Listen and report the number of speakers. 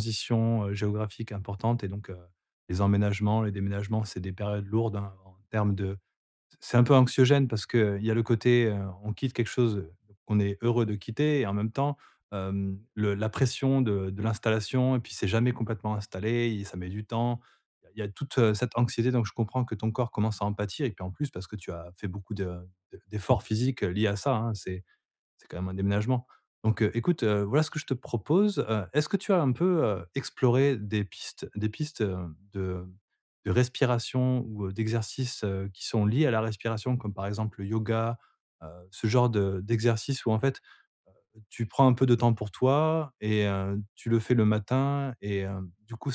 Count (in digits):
1